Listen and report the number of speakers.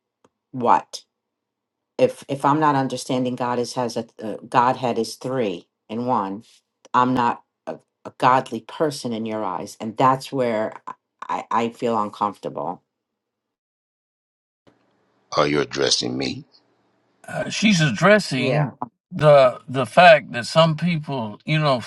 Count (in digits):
3